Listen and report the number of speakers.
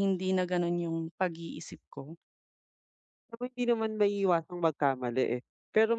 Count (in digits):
2